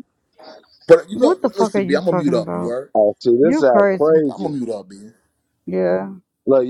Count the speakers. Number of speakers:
three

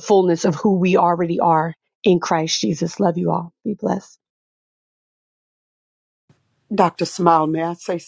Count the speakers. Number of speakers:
two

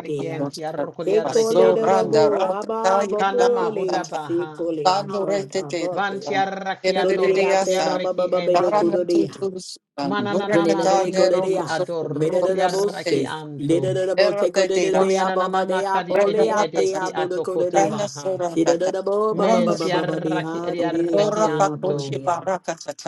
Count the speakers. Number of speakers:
three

